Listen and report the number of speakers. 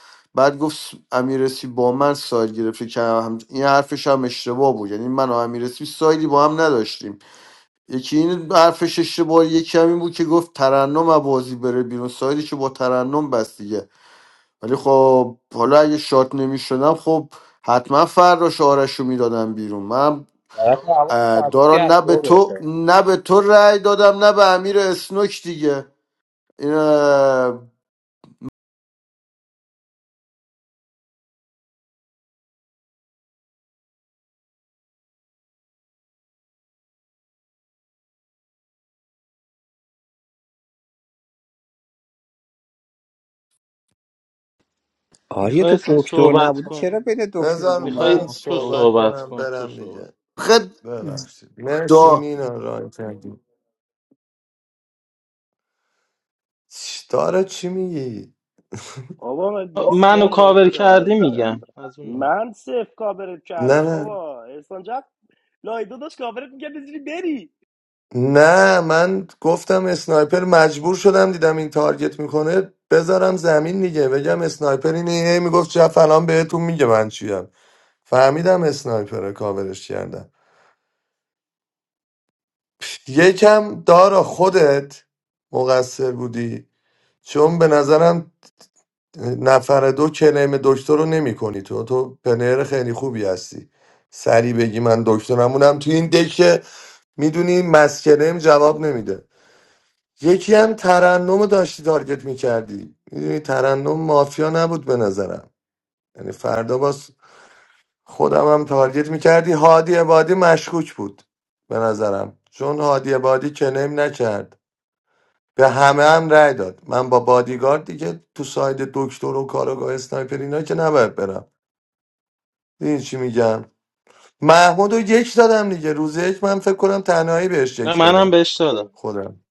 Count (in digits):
5